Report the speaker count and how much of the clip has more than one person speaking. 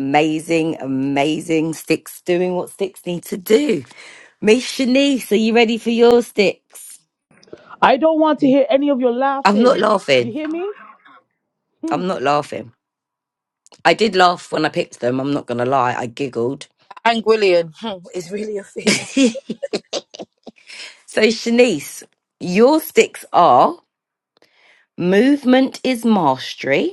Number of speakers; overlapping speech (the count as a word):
three, about 2%